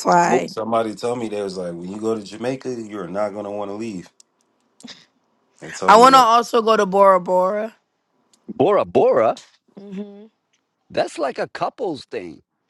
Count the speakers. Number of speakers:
three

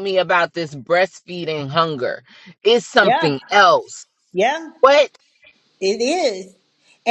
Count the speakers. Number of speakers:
two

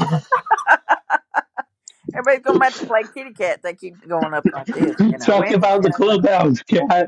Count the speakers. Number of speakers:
two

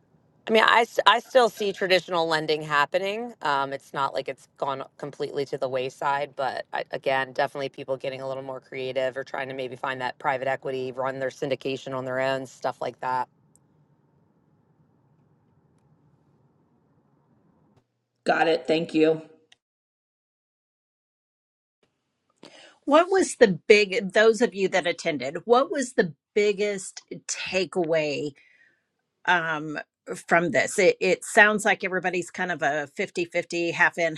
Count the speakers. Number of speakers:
three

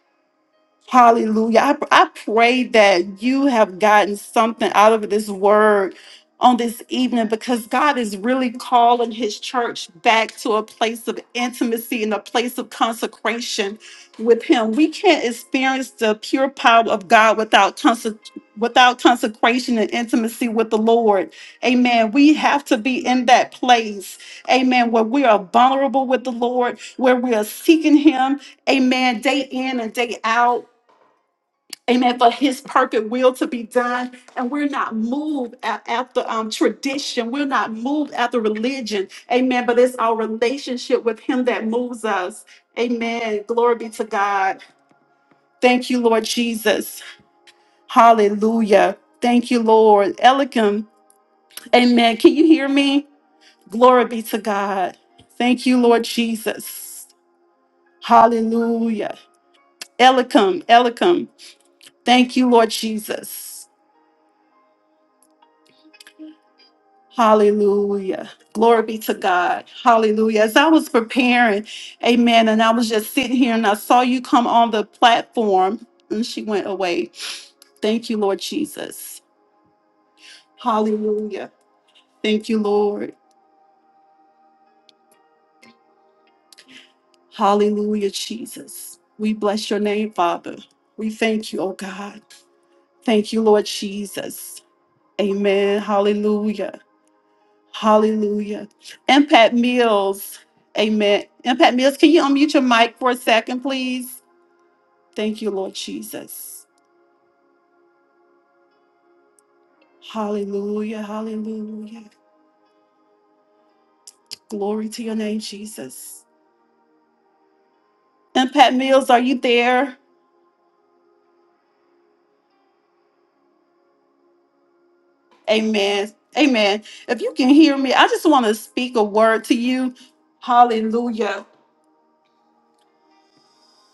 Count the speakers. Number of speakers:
one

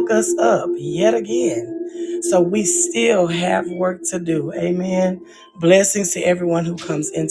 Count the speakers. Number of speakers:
one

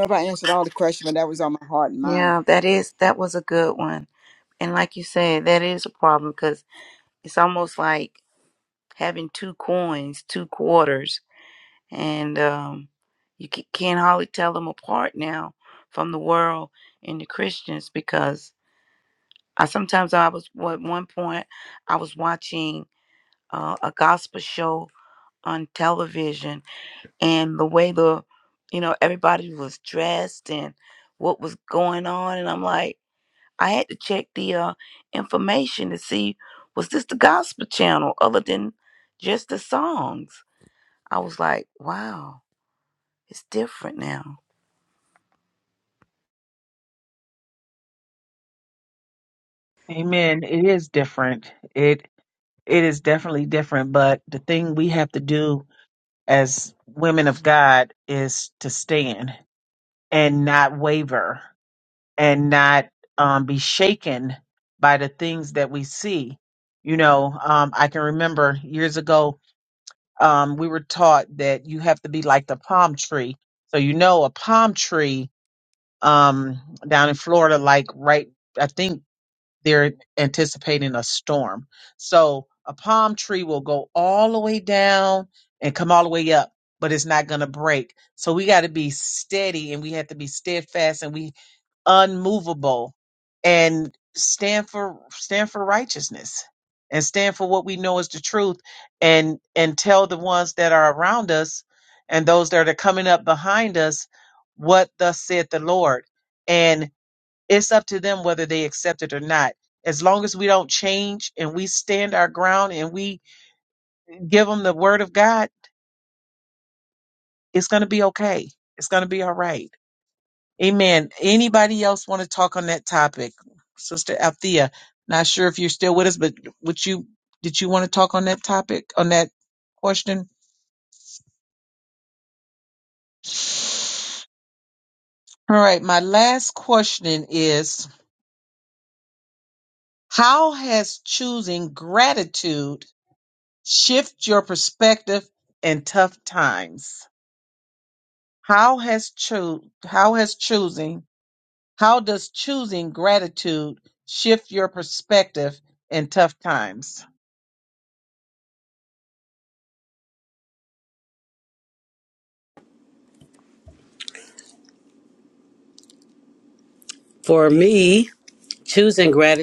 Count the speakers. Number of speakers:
four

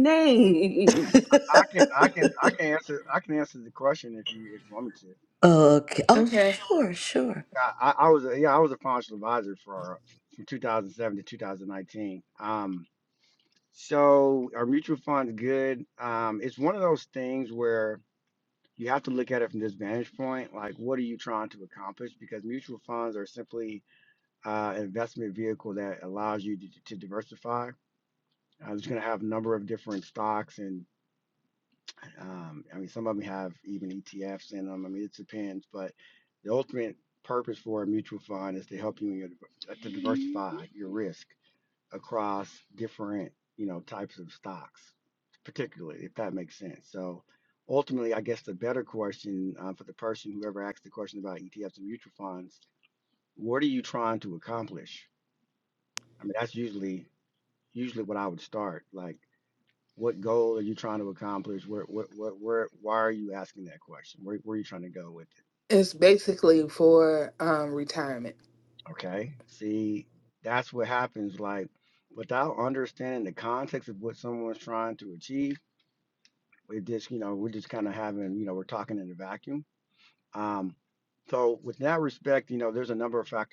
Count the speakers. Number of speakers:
four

